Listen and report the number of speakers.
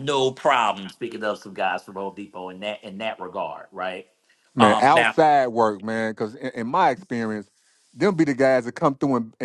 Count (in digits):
2